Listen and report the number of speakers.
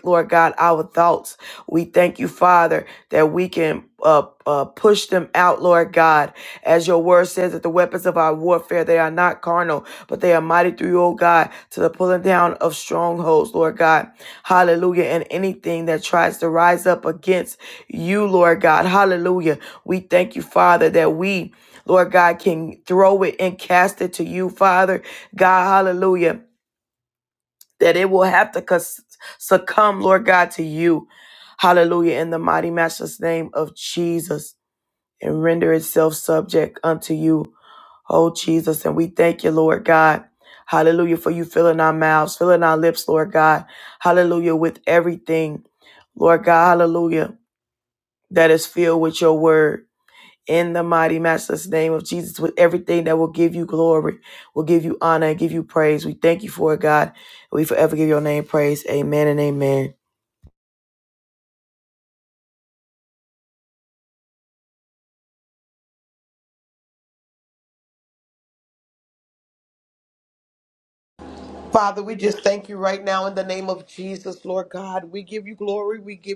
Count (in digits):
2